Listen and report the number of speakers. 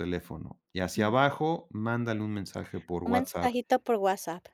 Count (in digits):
2